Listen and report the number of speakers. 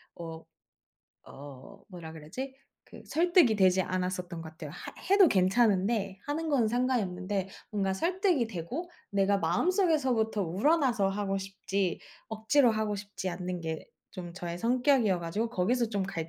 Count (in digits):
1